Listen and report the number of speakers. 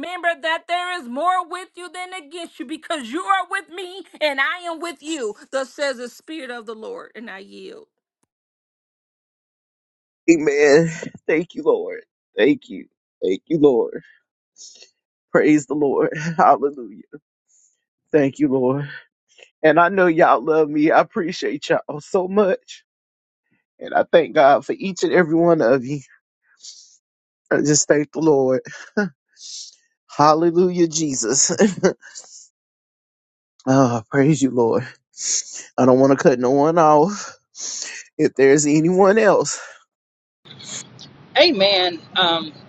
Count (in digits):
3